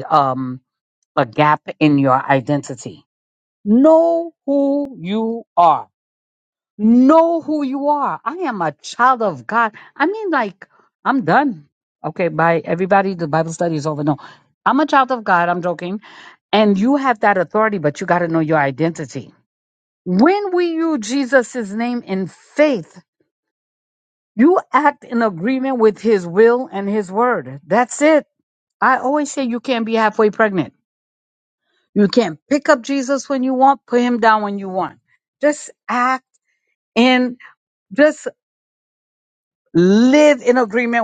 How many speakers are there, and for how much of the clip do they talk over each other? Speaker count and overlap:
one, no overlap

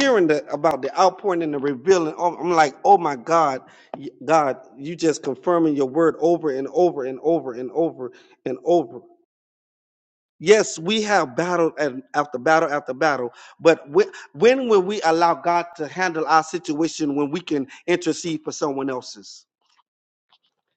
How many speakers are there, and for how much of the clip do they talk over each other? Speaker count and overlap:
one, no overlap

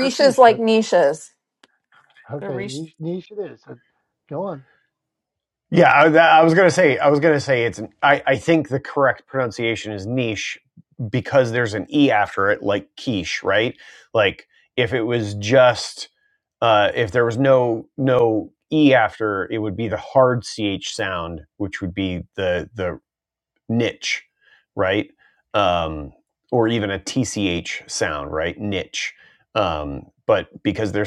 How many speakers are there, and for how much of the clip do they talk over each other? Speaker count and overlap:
three, about 3%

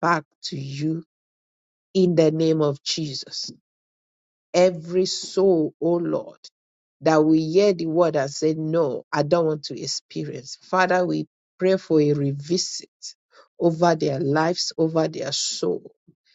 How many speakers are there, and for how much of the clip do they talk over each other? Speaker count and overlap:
one, no overlap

